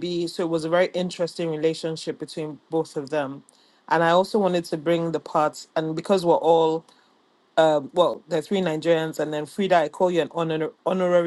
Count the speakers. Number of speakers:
one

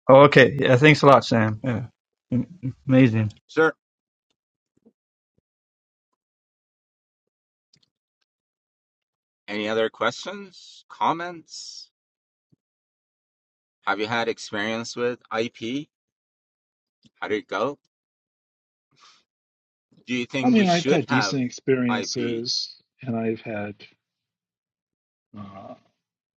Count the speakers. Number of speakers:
three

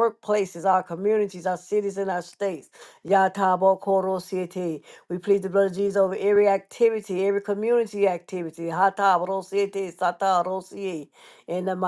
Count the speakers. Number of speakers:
one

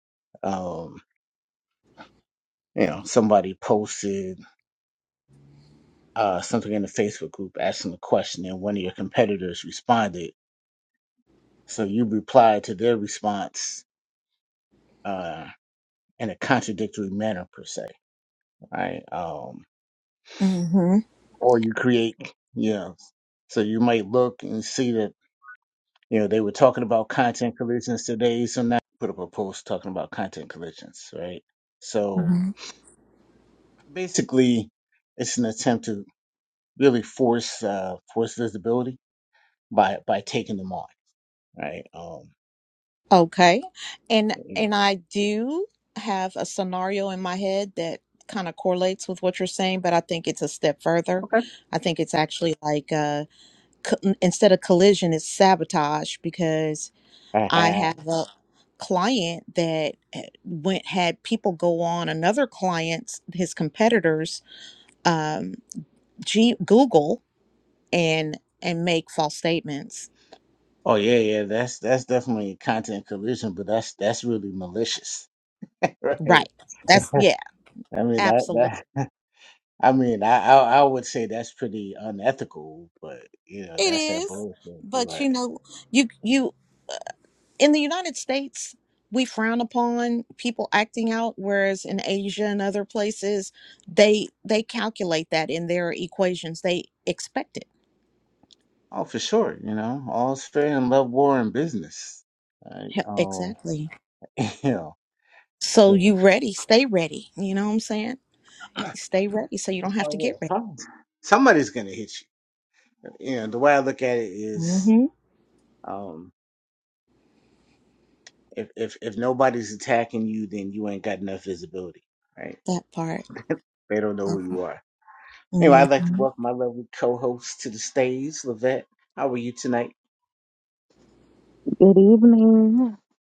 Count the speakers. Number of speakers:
three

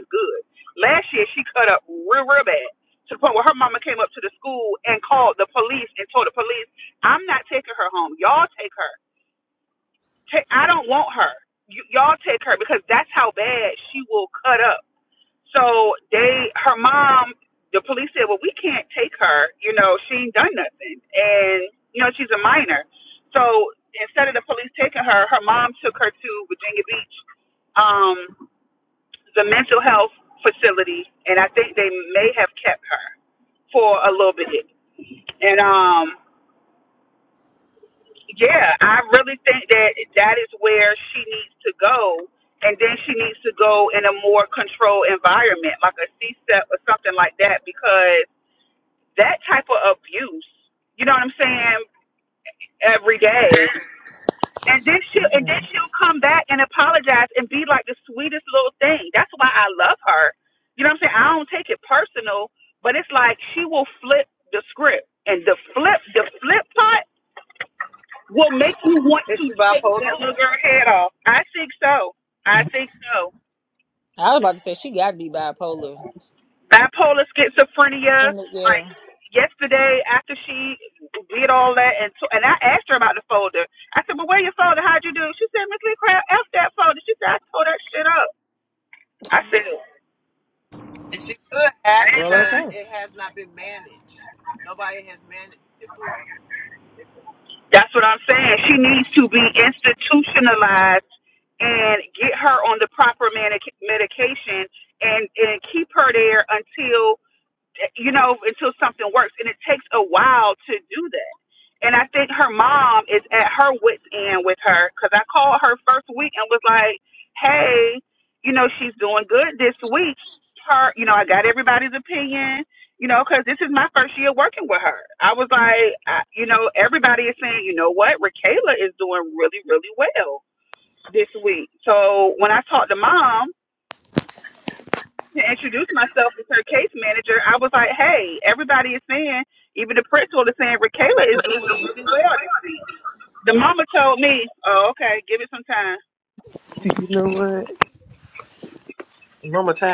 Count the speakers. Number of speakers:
four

